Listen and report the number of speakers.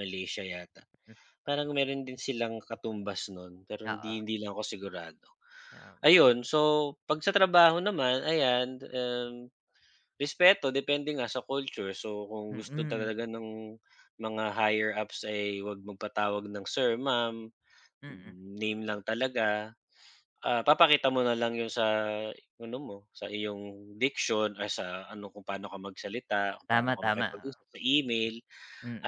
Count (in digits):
2